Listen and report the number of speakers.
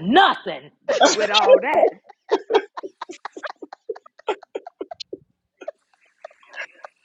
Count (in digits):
1